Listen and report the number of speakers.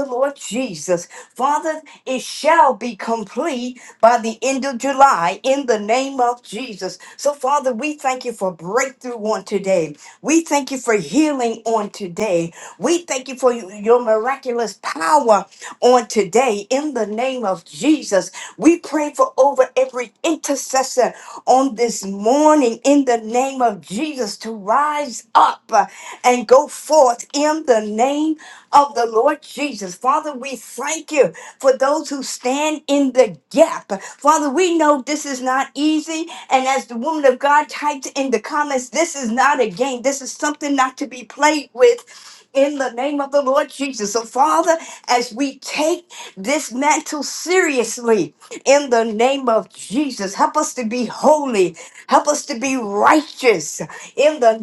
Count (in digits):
1